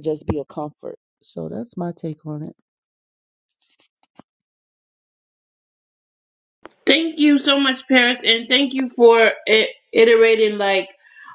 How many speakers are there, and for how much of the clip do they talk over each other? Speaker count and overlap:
two, no overlap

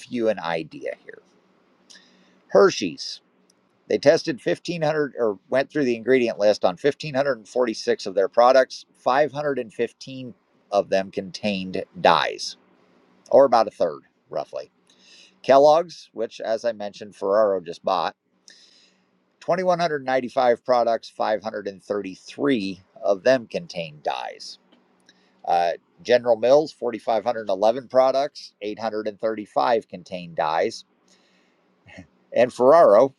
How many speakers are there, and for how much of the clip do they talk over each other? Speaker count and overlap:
one, no overlap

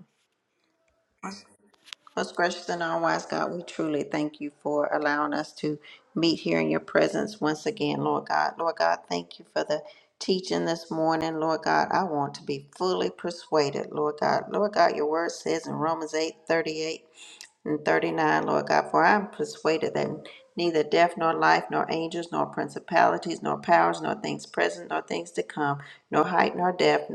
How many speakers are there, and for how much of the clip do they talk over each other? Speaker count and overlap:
one, no overlap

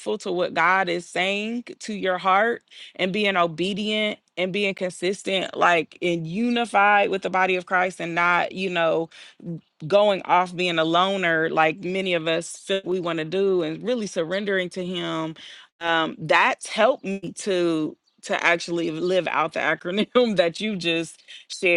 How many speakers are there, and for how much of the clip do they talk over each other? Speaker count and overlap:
one, no overlap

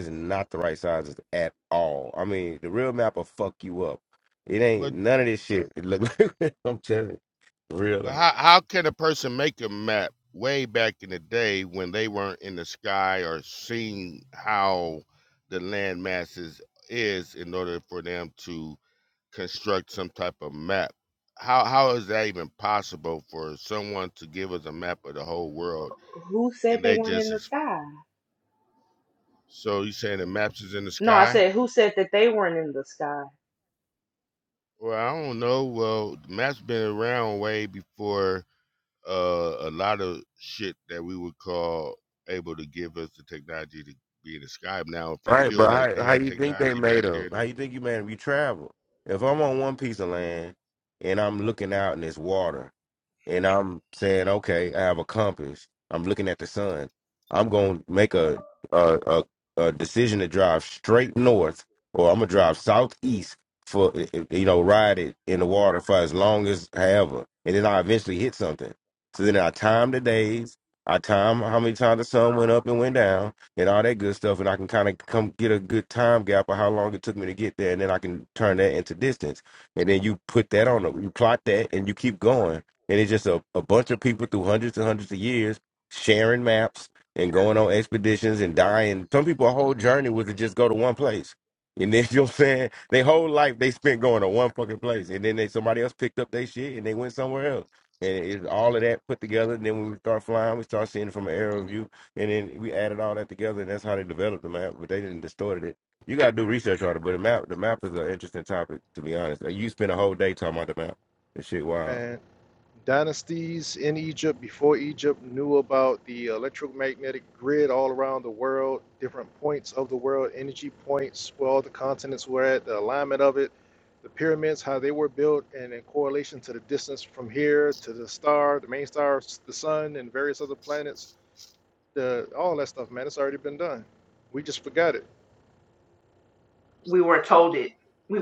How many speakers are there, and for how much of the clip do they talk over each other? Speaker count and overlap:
four, about 3%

